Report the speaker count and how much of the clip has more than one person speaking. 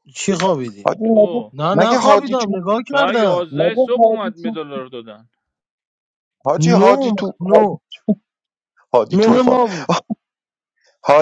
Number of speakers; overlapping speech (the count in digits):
3, about 38%